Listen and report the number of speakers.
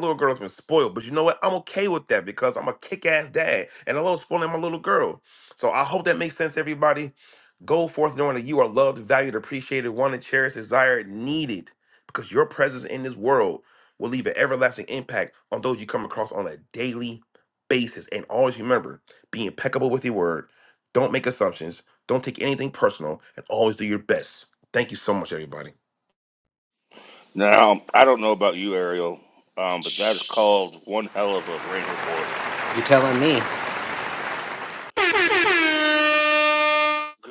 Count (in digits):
3